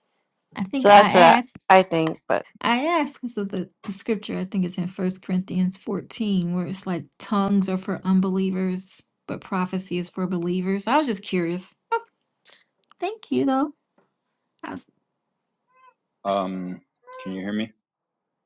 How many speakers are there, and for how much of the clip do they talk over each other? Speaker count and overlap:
3, about 4%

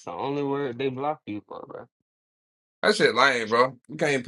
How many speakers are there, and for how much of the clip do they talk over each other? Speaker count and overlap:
2, no overlap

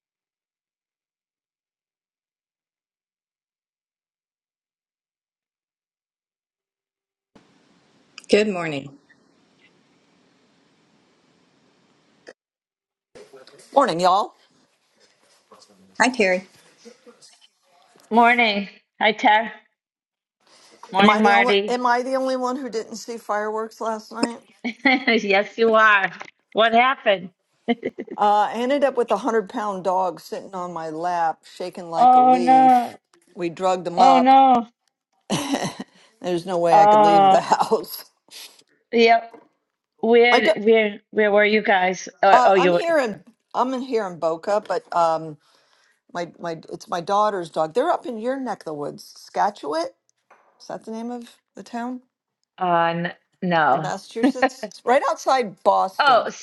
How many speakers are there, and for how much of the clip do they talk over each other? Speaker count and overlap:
3, about 7%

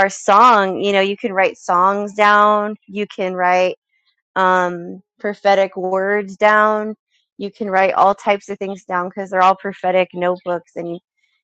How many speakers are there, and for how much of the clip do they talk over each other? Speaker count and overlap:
1, no overlap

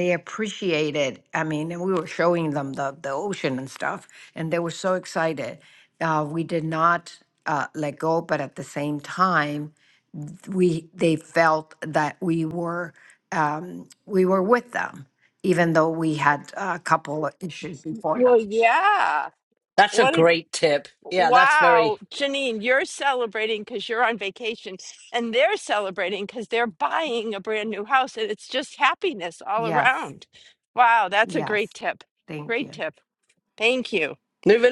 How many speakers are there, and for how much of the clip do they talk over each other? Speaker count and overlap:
3, about 6%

